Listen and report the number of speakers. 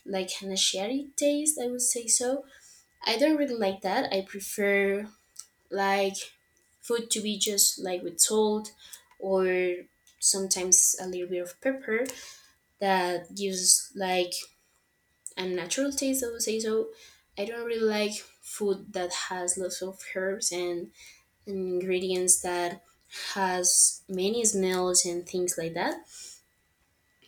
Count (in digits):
1